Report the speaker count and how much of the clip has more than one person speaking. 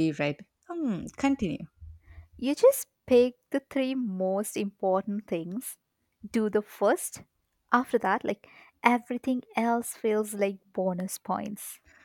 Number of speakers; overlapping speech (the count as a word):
two, no overlap